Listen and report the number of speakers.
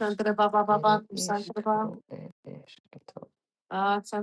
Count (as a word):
two